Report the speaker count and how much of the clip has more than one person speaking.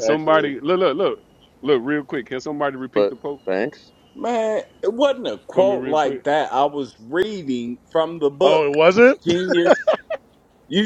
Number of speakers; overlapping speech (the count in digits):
3, about 14%